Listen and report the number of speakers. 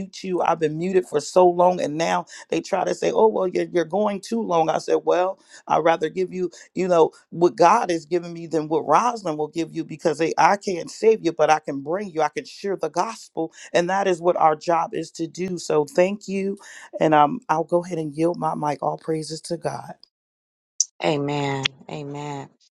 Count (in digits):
2